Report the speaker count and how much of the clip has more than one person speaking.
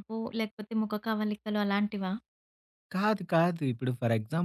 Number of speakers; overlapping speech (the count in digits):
2, no overlap